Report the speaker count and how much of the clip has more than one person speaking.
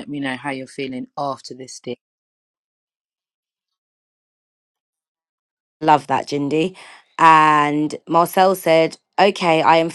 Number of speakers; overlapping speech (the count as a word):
two, no overlap